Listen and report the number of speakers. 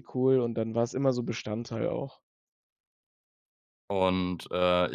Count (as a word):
two